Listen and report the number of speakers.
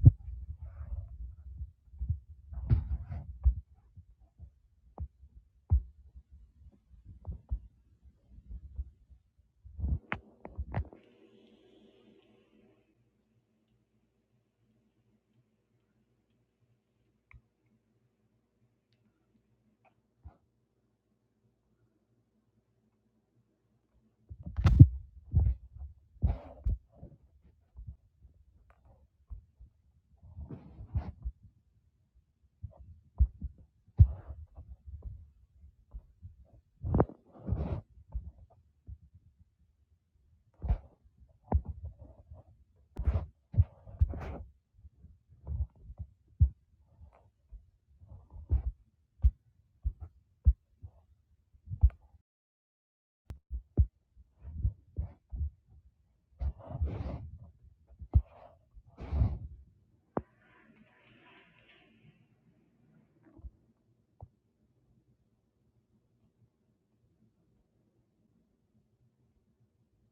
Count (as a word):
zero